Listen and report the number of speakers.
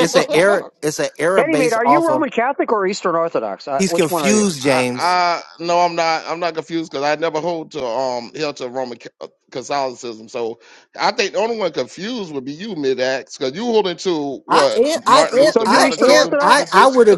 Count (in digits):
3